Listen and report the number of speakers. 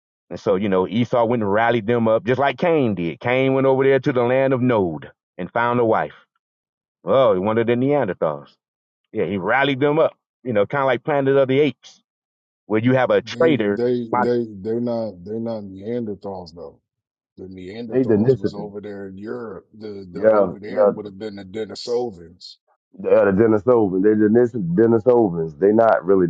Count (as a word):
three